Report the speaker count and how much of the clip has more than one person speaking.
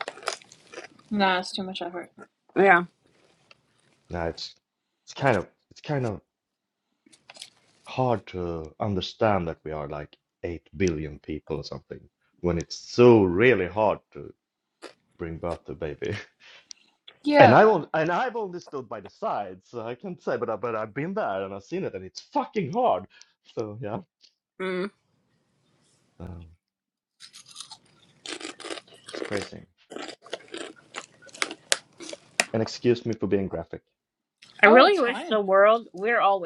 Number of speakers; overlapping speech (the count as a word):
three, about 3%